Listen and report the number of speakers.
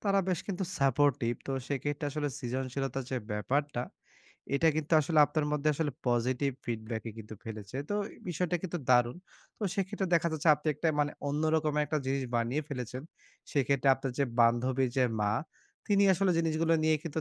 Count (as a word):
one